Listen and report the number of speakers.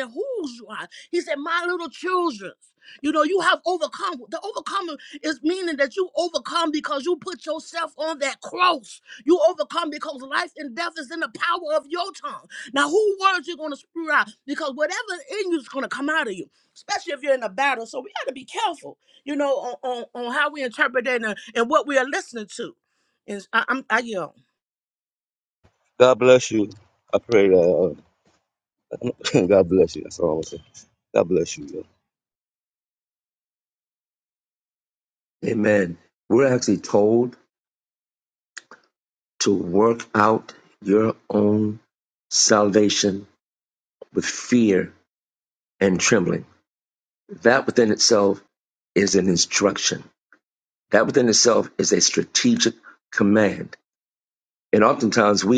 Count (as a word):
three